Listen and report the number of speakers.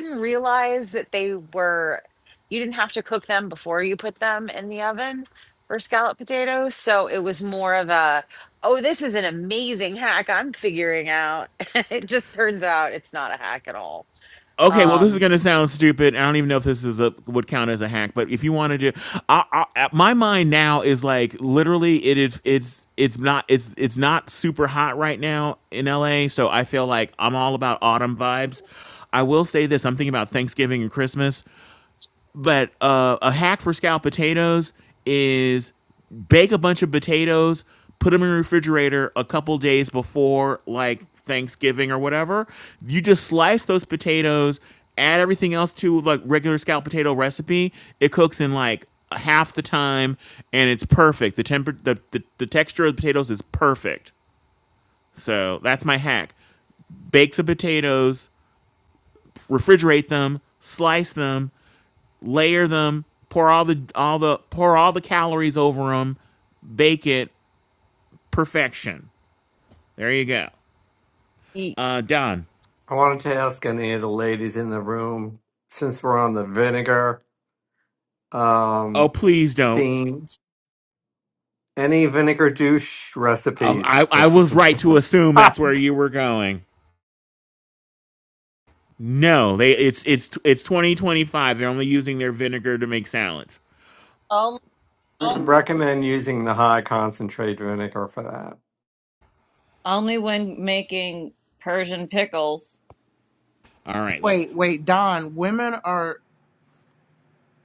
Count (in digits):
5